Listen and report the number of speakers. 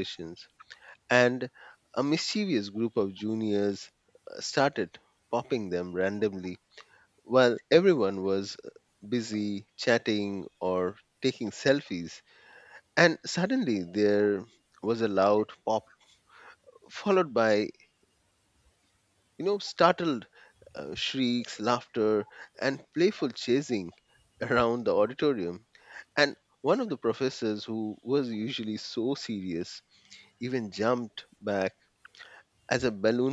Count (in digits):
1